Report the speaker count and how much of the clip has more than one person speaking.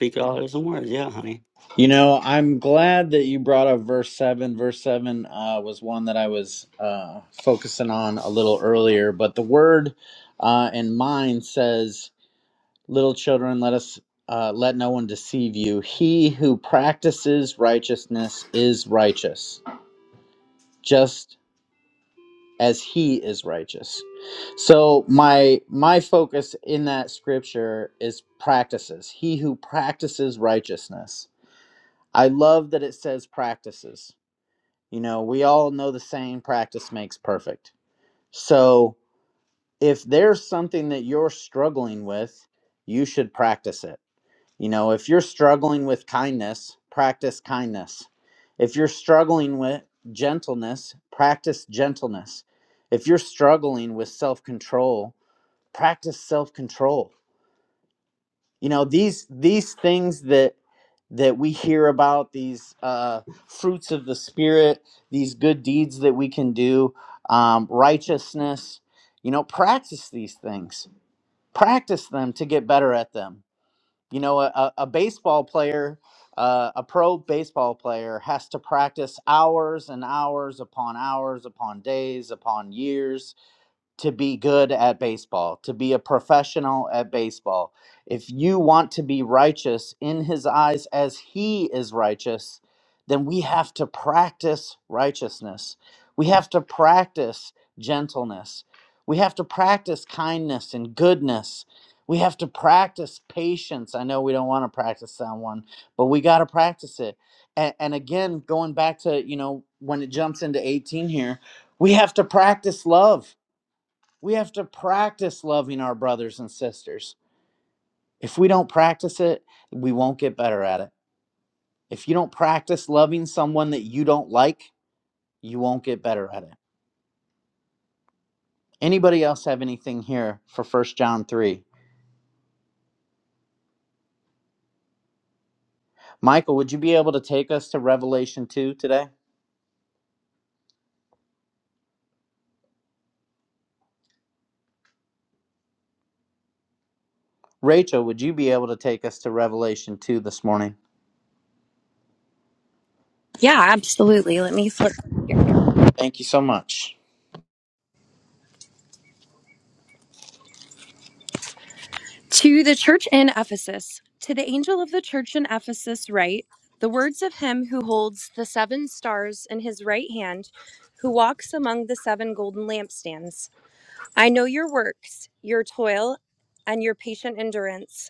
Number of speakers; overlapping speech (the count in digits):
3, no overlap